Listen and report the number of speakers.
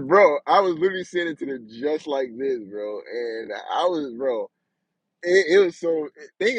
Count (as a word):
one